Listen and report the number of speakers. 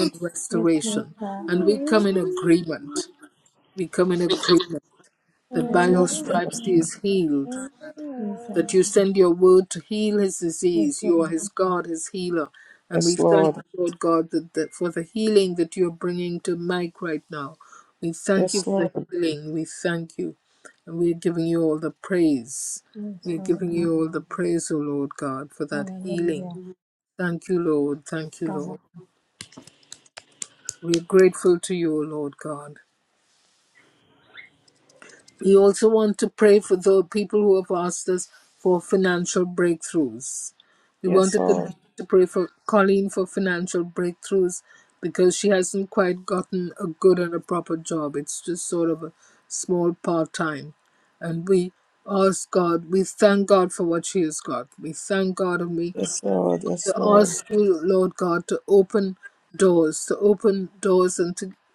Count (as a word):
three